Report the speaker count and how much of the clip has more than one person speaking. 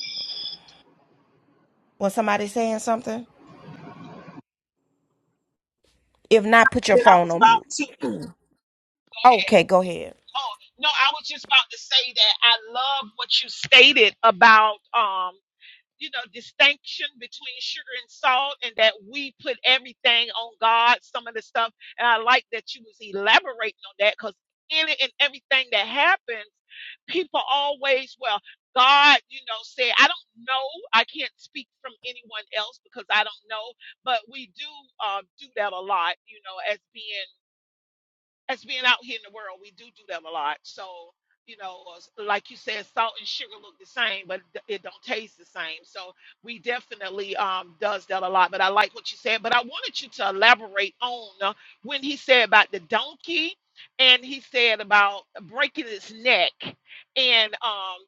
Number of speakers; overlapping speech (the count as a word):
two, about 1%